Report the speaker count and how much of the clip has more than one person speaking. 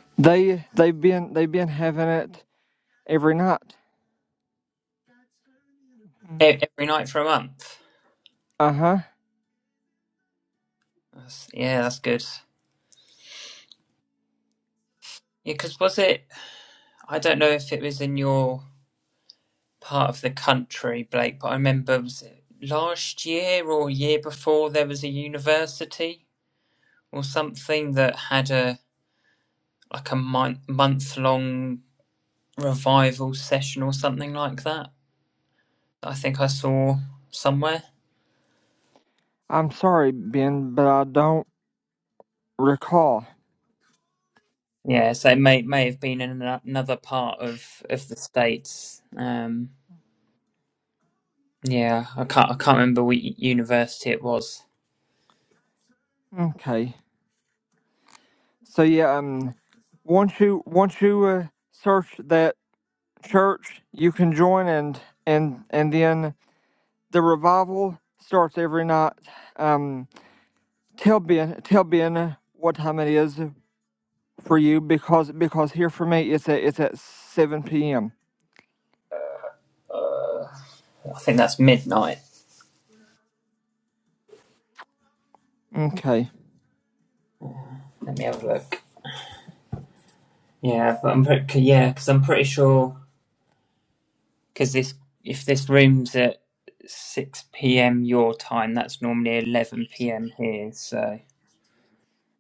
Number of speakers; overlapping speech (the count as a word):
two, no overlap